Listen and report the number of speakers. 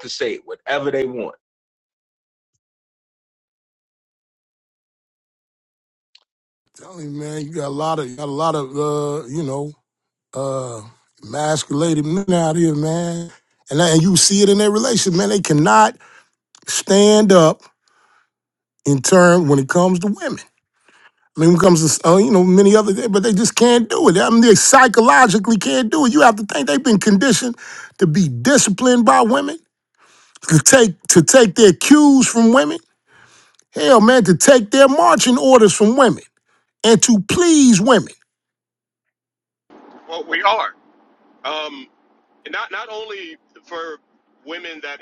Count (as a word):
three